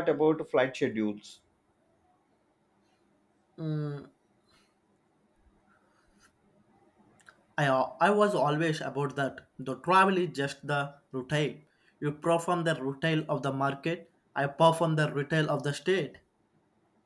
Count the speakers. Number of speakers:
2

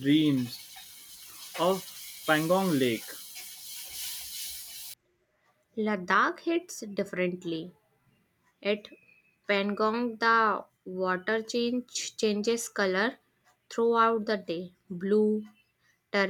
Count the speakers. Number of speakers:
2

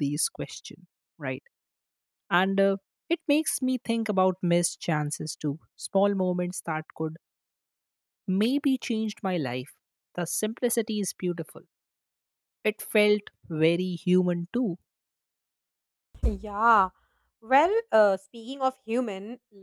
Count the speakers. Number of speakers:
2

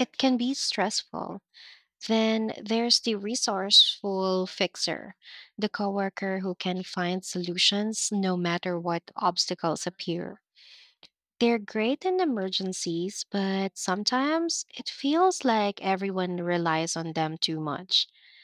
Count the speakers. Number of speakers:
1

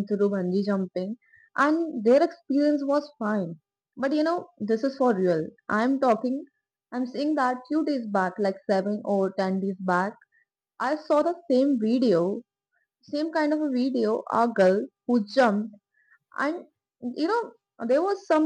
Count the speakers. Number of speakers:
1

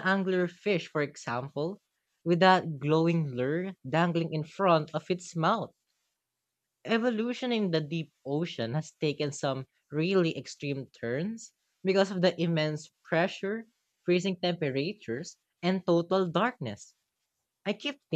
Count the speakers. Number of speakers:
1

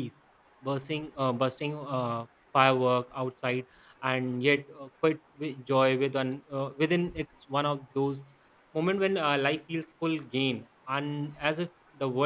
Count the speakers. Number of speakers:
1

